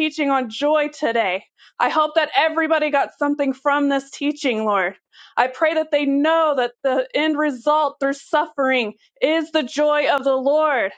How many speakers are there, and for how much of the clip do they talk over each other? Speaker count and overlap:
one, no overlap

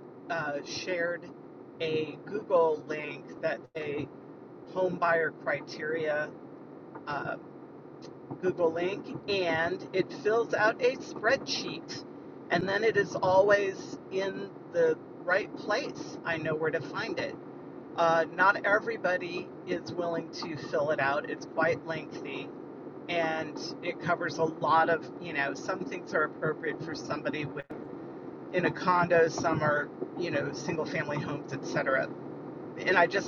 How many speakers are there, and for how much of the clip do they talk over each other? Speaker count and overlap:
one, no overlap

